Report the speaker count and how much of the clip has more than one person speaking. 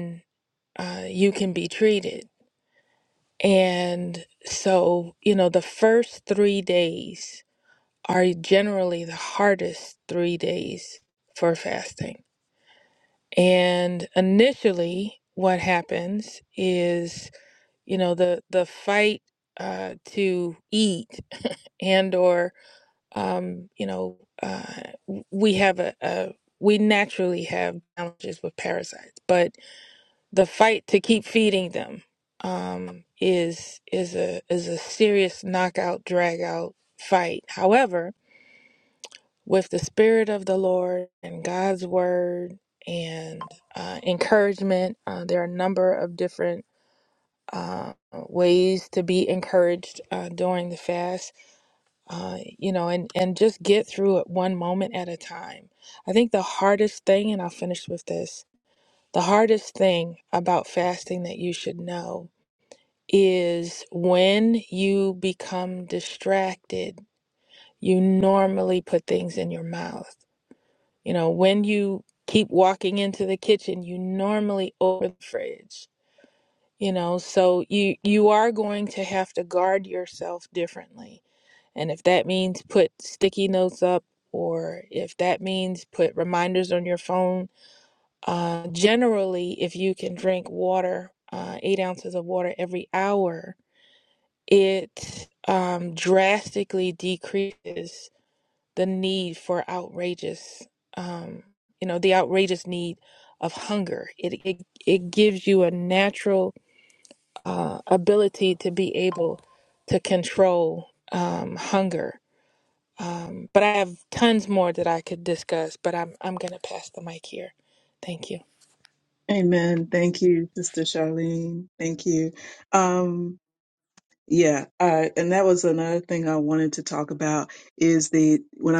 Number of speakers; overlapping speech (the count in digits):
2, no overlap